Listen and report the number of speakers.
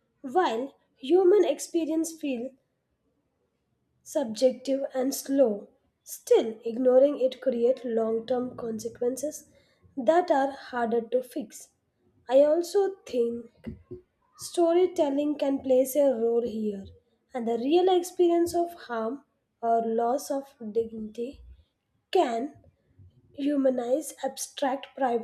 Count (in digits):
1